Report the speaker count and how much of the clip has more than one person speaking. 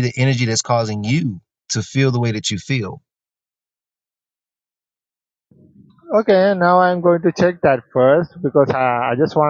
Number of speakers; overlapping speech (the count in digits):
2, no overlap